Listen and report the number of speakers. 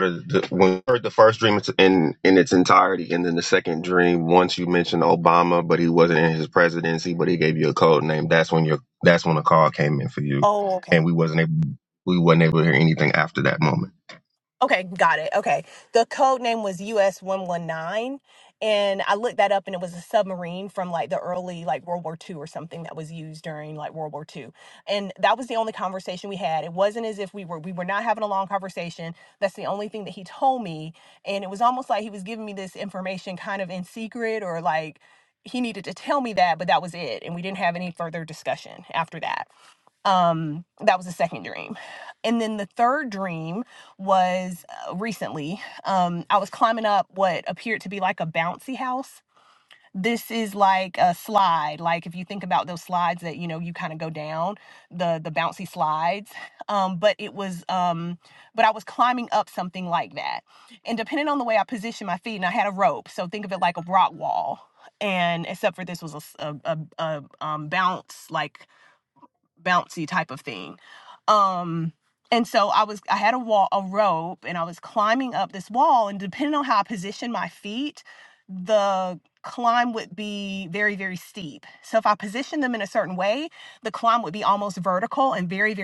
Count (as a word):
two